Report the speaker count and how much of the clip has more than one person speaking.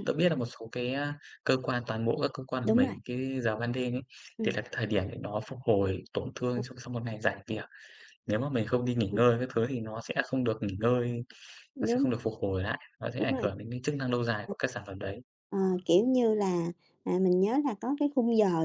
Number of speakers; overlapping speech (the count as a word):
two, about 6%